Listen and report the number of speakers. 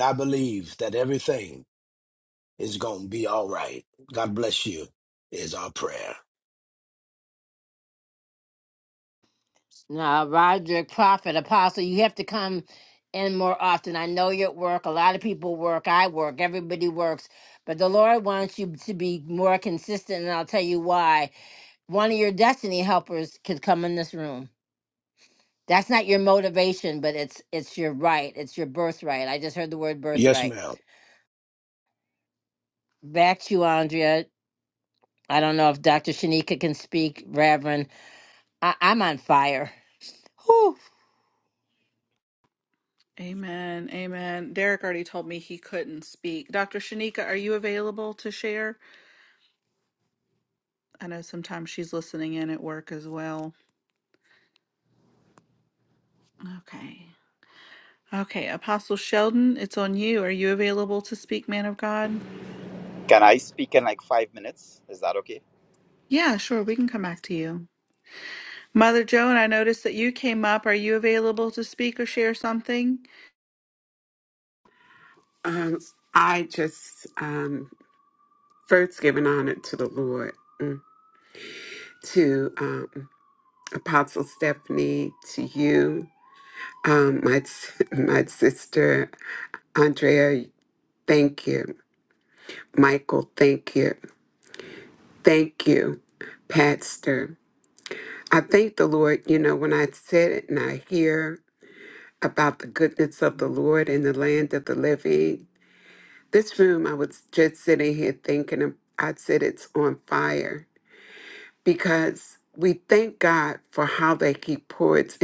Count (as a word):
five